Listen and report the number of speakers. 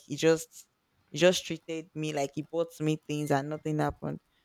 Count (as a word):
one